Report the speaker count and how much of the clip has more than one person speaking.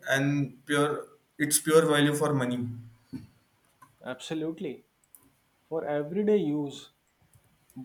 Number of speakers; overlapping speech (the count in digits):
2, no overlap